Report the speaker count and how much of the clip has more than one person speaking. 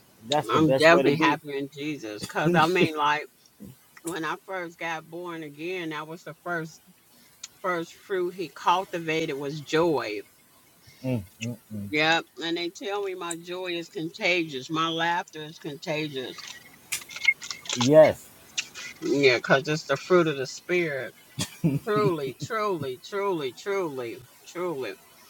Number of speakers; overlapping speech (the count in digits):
2, about 4%